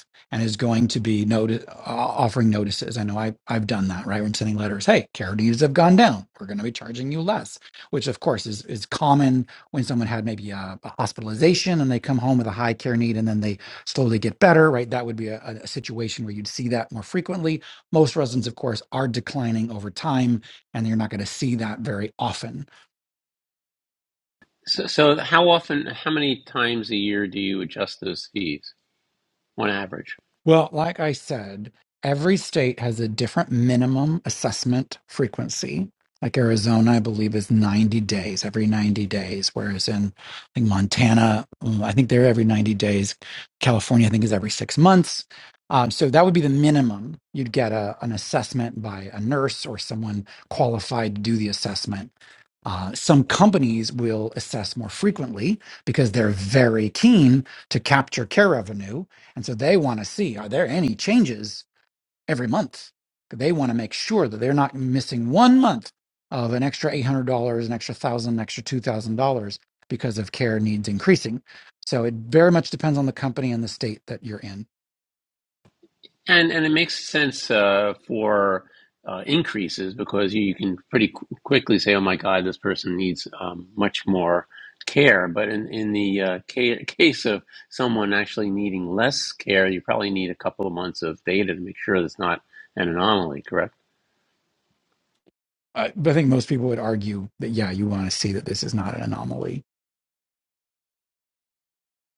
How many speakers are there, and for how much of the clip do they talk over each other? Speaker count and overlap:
two, no overlap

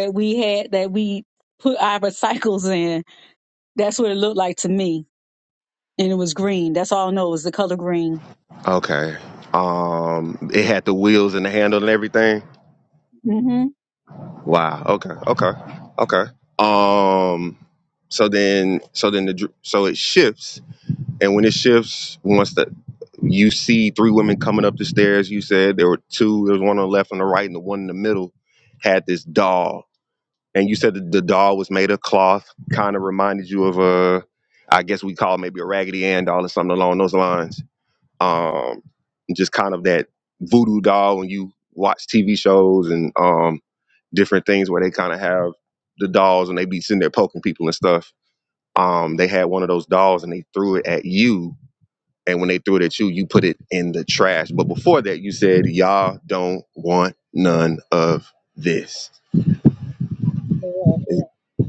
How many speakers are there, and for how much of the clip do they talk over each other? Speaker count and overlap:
two, under 1%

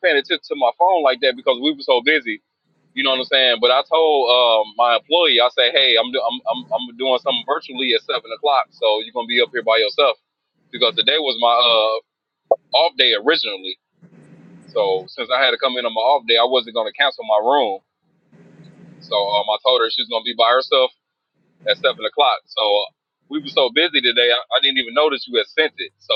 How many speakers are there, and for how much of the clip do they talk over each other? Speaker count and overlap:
one, no overlap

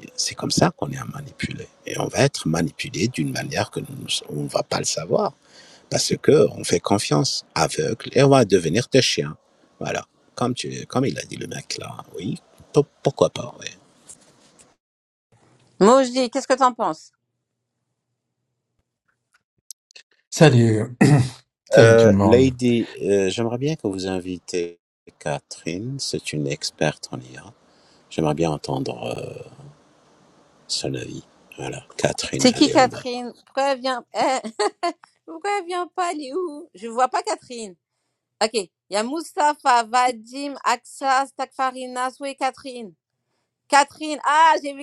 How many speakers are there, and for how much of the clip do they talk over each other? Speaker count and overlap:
three, about 3%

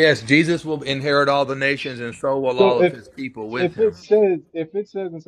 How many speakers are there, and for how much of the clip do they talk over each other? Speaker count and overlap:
two, about 15%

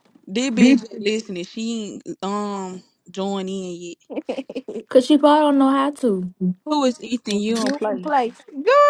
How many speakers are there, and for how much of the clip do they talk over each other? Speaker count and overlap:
three, about 15%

